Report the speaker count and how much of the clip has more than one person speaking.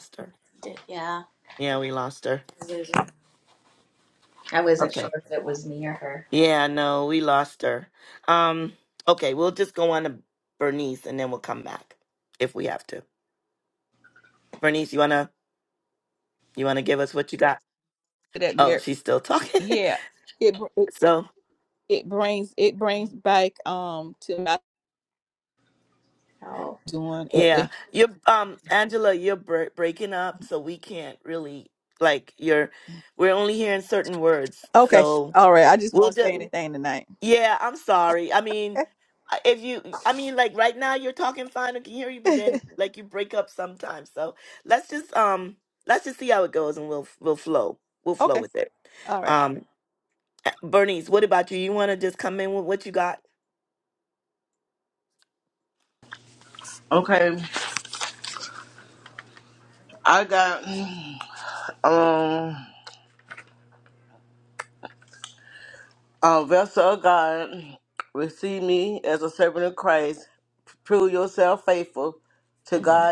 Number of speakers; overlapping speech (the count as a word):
four, about 4%